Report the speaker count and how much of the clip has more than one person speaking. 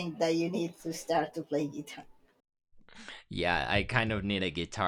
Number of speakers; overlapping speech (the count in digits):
2, no overlap